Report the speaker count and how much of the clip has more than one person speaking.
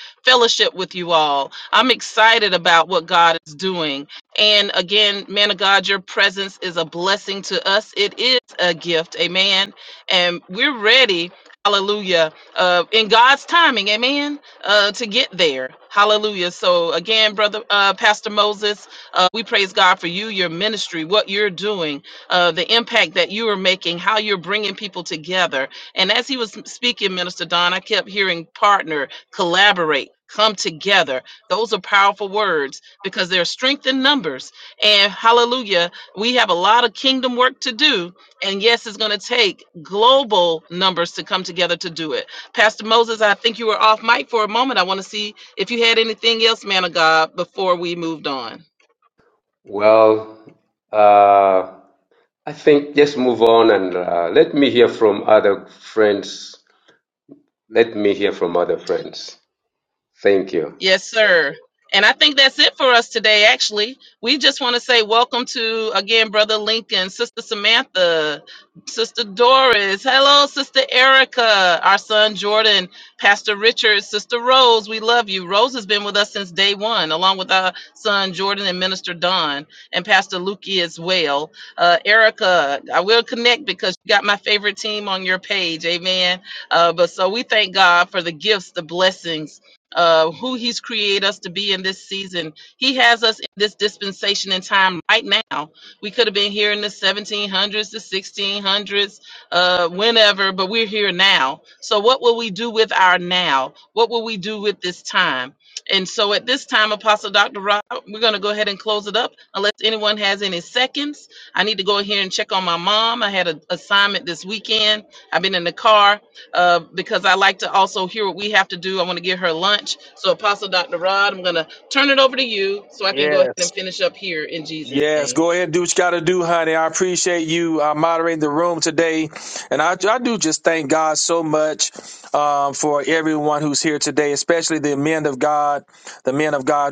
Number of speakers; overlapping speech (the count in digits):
3, about 1%